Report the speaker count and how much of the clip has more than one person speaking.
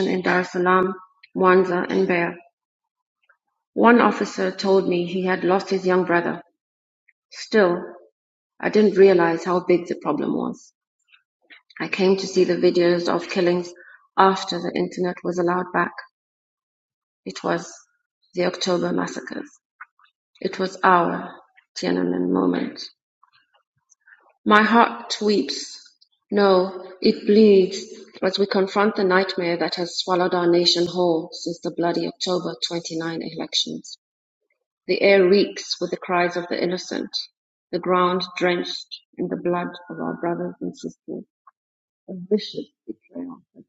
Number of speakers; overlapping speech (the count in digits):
1, no overlap